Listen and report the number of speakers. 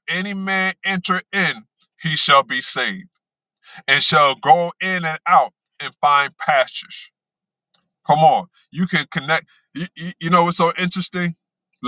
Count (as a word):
one